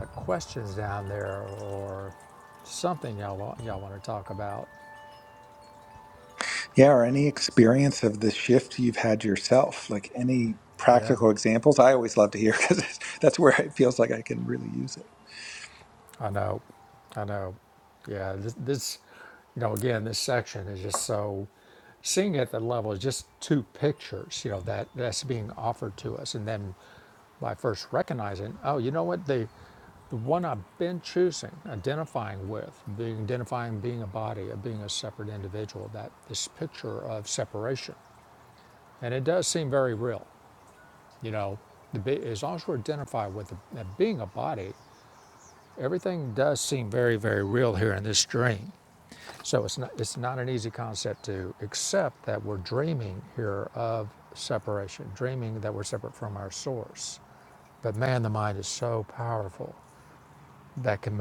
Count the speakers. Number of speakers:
2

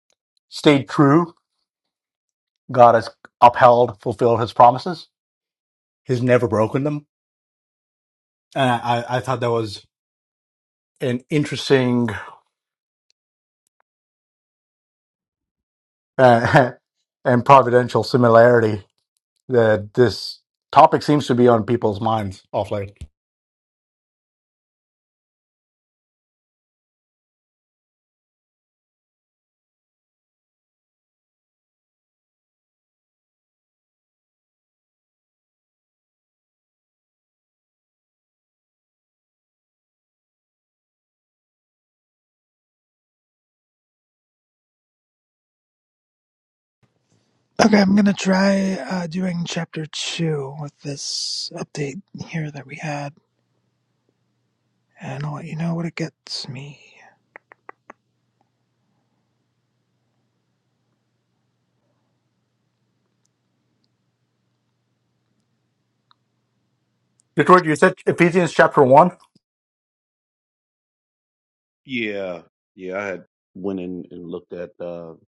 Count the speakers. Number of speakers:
3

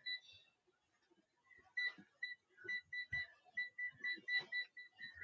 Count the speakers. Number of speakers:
0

